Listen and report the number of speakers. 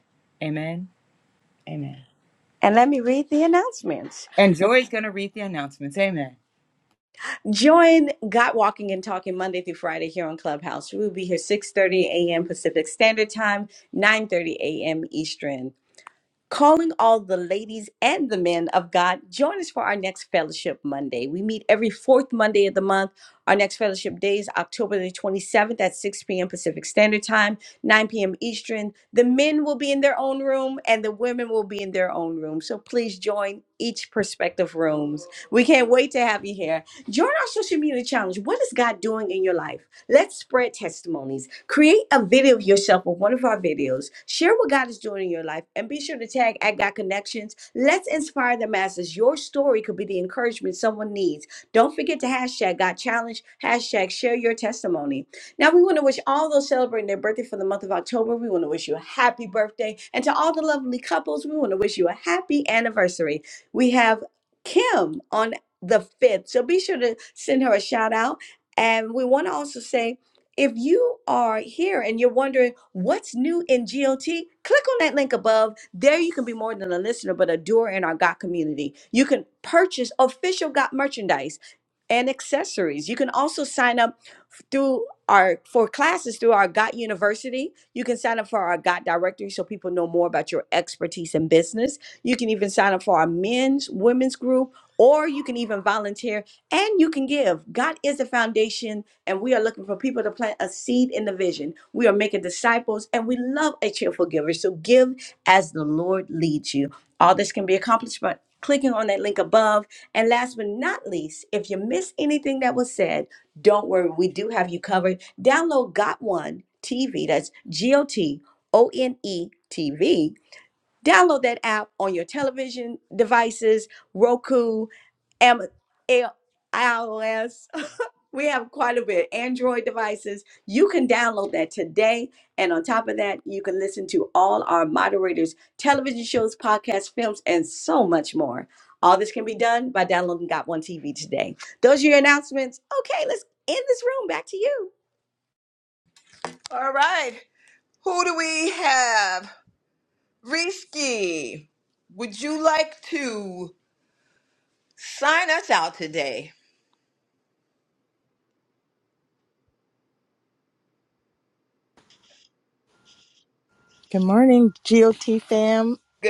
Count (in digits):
4